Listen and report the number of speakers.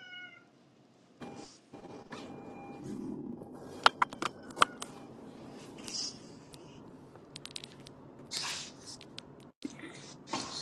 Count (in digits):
0